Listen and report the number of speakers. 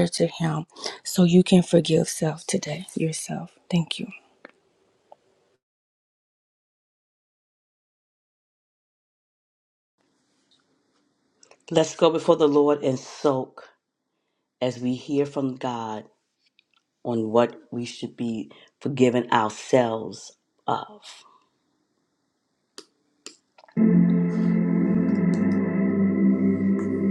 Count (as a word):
two